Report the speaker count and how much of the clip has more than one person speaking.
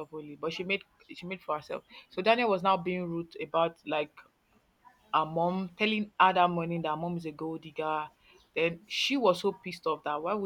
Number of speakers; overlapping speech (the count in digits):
1, no overlap